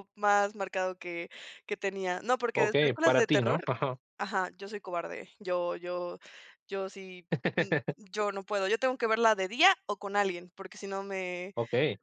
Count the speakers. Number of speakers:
2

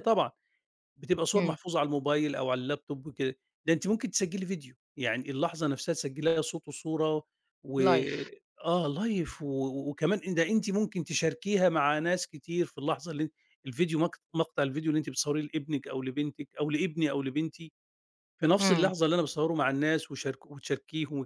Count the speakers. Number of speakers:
2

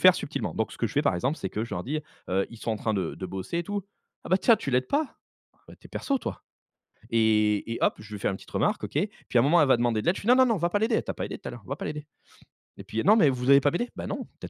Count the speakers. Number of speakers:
1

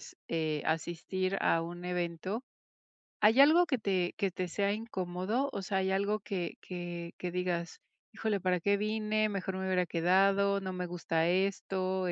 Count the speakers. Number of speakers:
1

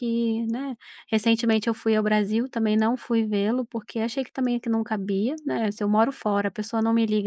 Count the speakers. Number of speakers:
1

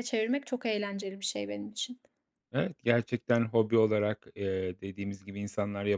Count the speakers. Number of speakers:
2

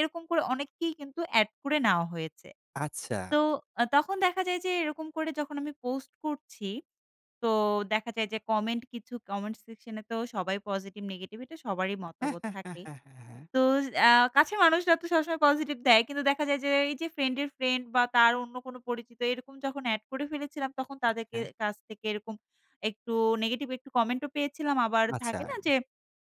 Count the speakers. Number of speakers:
2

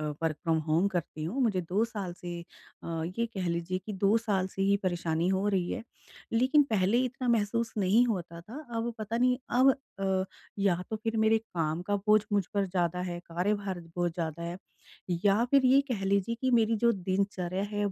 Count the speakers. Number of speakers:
1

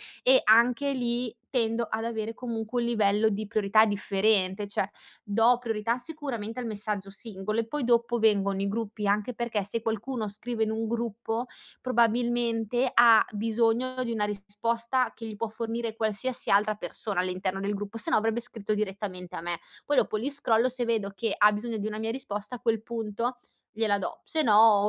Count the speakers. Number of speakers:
1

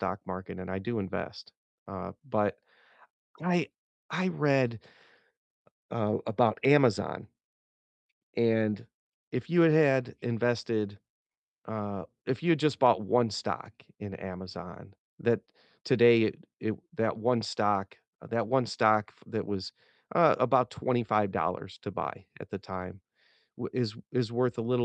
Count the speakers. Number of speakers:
1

